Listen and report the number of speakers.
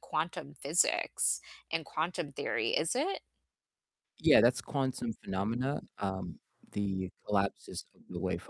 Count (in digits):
2